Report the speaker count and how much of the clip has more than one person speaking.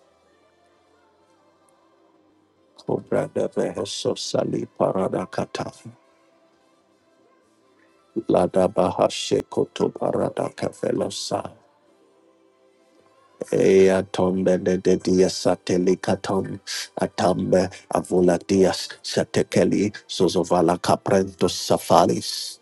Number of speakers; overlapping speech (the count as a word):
one, no overlap